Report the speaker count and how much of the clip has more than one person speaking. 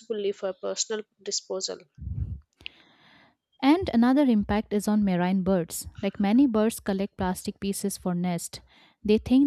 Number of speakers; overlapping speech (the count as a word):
two, no overlap